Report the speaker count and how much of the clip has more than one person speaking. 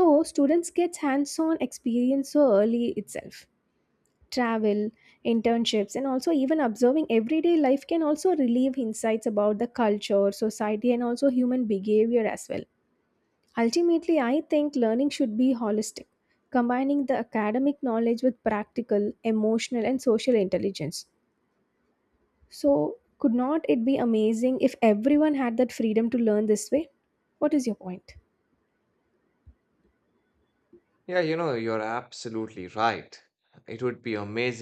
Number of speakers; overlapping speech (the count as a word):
two, no overlap